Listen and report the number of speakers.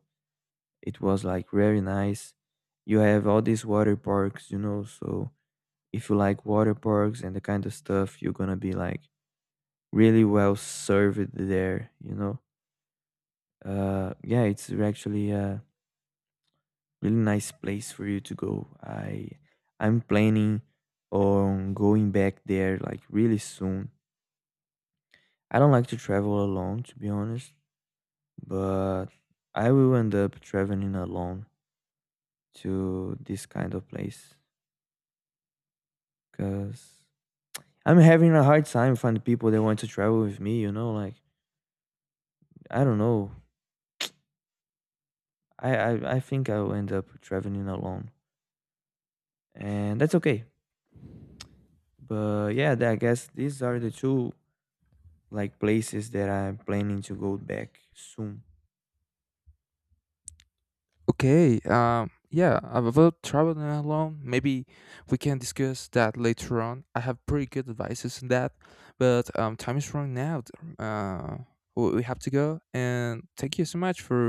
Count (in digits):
2